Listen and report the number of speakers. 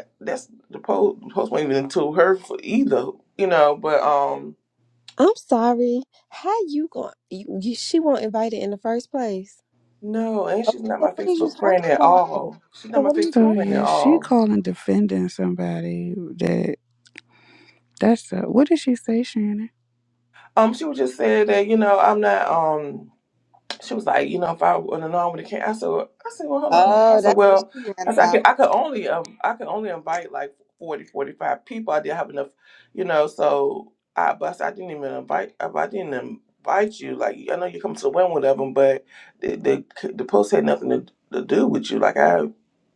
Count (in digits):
3